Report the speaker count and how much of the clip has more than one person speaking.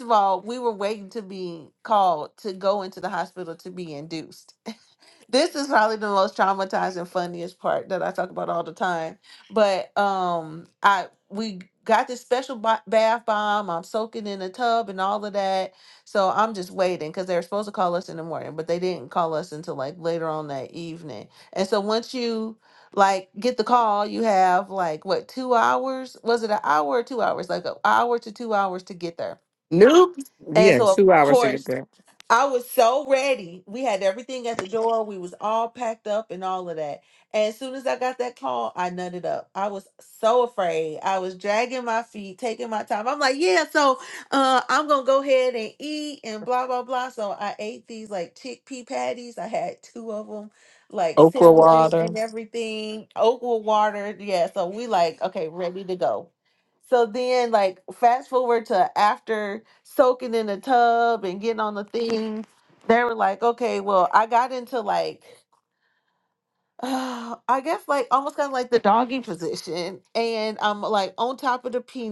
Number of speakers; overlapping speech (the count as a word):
two, about 3%